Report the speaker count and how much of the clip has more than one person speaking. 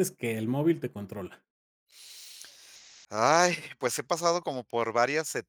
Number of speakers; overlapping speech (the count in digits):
2, no overlap